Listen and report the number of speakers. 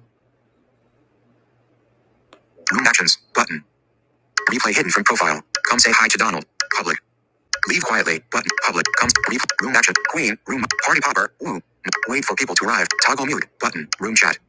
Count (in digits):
1